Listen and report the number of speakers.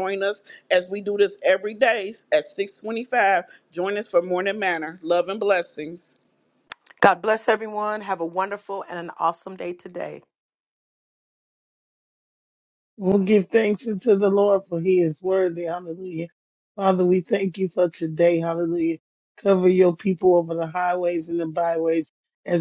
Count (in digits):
3